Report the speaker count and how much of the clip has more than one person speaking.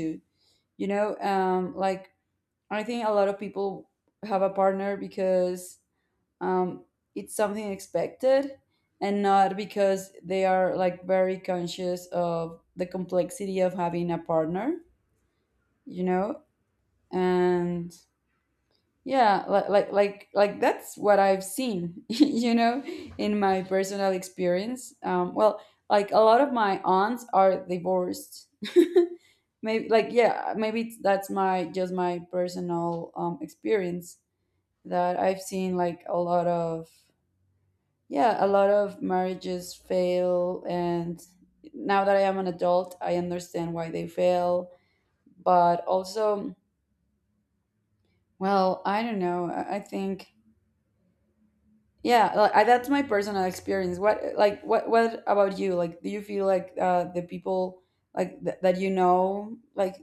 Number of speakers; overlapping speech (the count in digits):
1, no overlap